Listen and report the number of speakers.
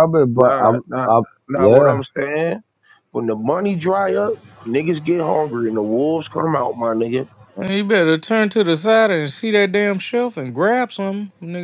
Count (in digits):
3